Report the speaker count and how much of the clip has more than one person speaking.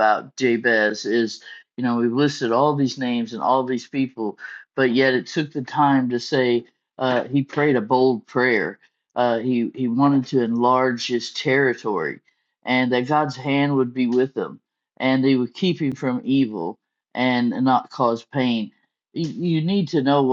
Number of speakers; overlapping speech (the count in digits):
1, no overlap